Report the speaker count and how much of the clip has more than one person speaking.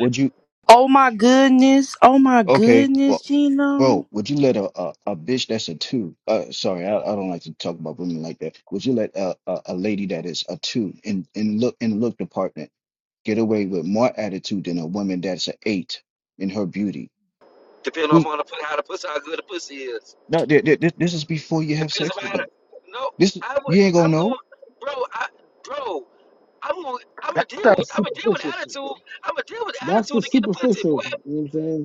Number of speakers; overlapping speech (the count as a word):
four, about 18%